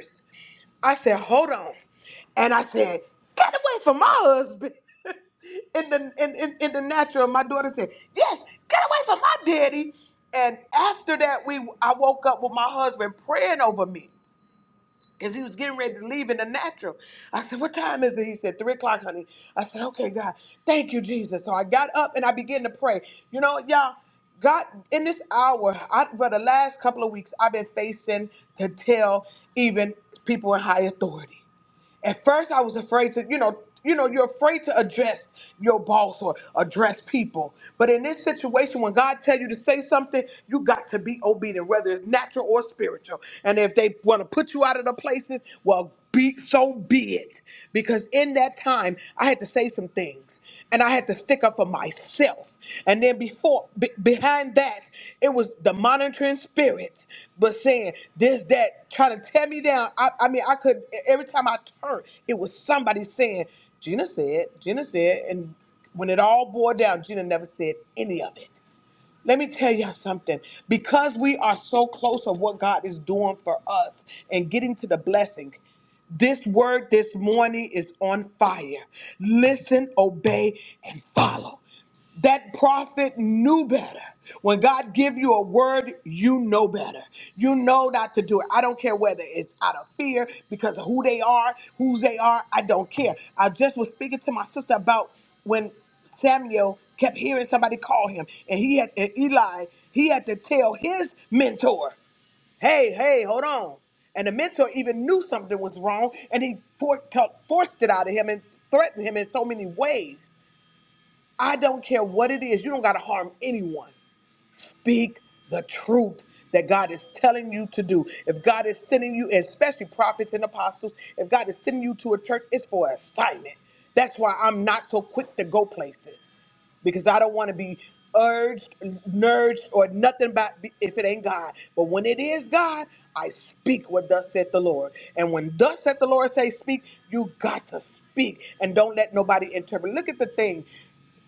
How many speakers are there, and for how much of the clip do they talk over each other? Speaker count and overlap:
1, no overlap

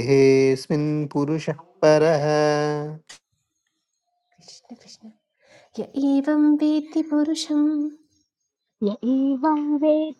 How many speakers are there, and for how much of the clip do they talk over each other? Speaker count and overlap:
3, no overlap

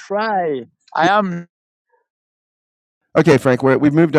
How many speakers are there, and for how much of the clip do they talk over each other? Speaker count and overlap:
2, no overlap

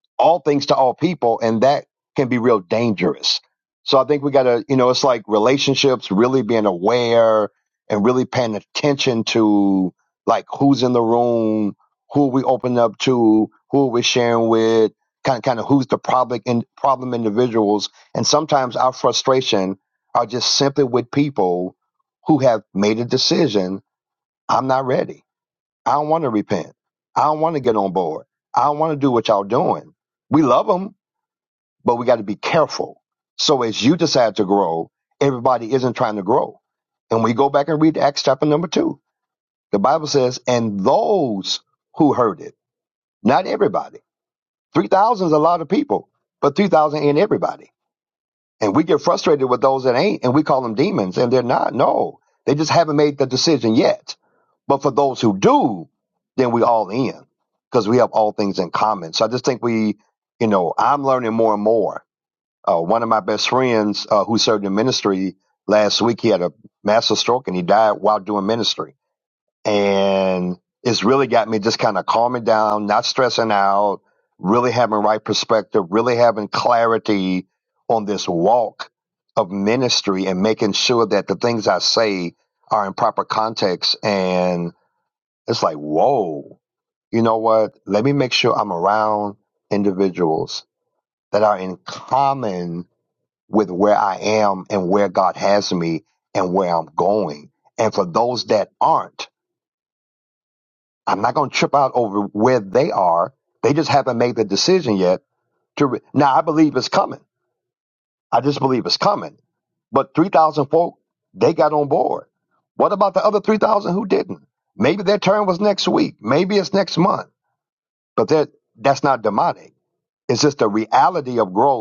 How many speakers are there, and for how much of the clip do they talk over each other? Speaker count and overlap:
1, no overlap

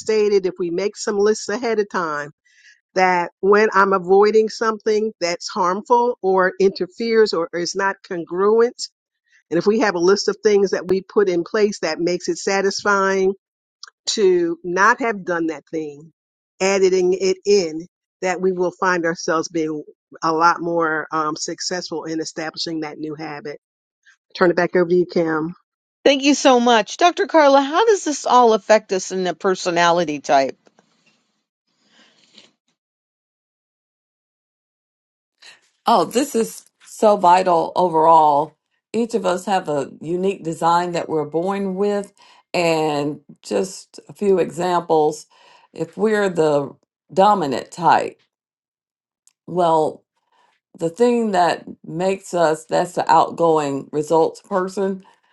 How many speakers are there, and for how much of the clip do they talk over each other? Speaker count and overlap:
3, no overlap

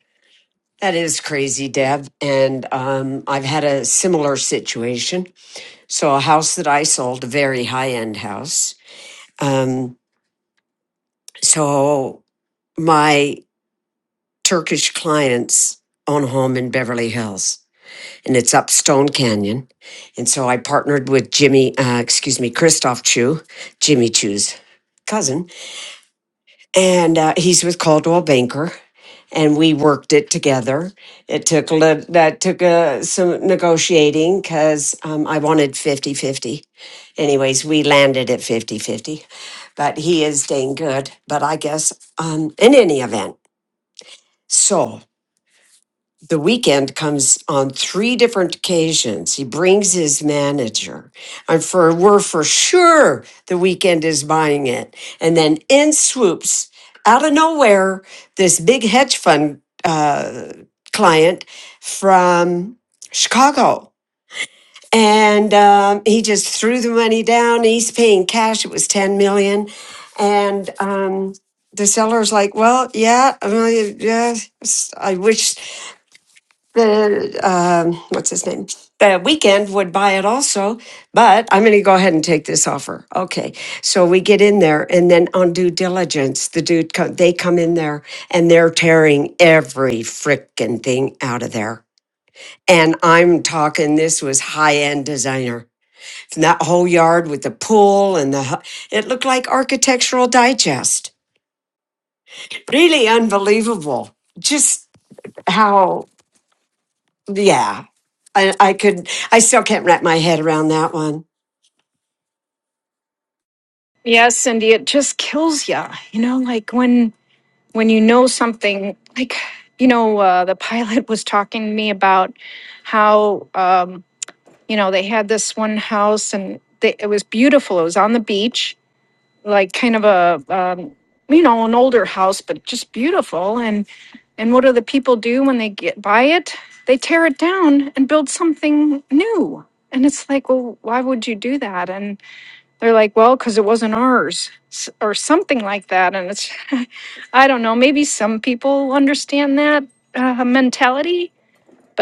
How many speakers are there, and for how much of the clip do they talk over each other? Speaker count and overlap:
2, no overlap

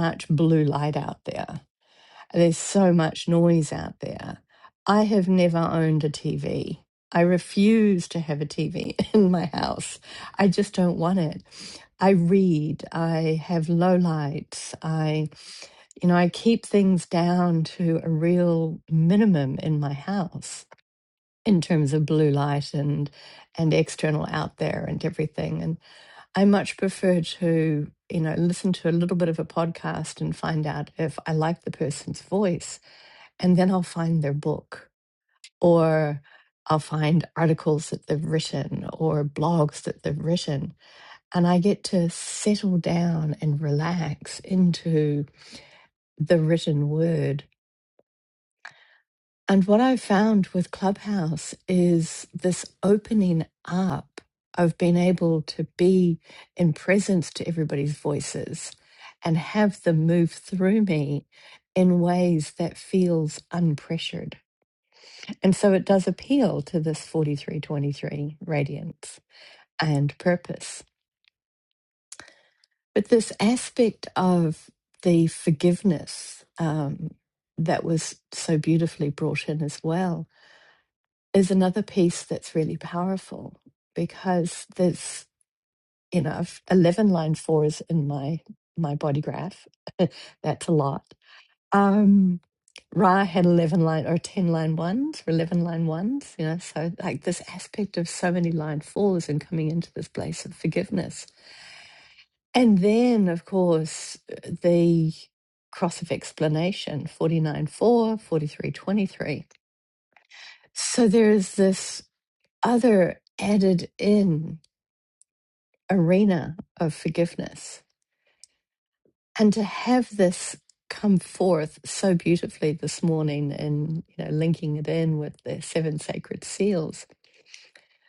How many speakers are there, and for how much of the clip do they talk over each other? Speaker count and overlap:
1, no overlap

